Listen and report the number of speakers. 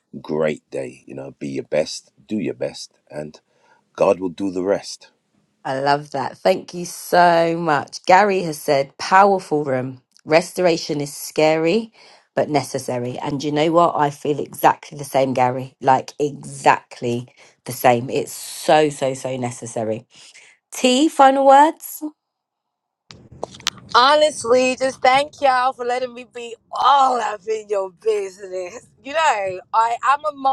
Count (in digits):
3